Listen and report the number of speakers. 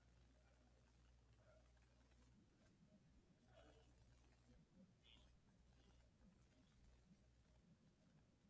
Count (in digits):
0